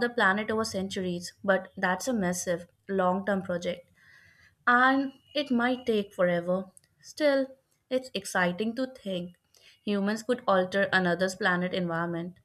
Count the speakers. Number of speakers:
one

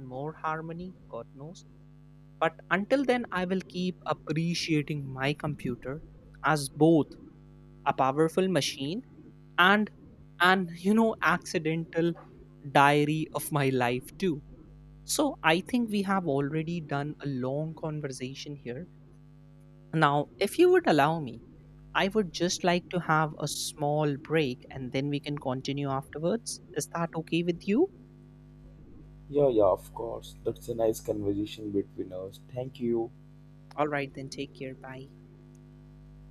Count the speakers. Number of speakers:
two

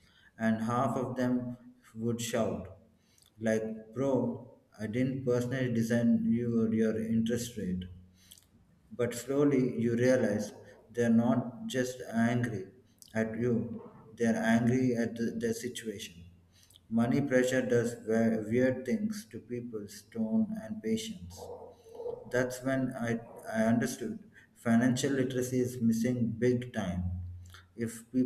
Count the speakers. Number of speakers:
one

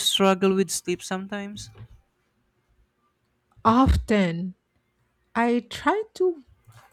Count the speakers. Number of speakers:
two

